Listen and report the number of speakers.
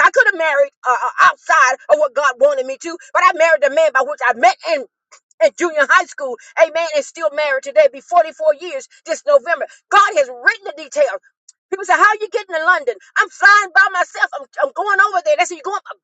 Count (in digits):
1